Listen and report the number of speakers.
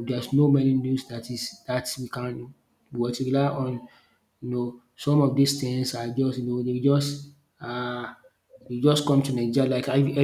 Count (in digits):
1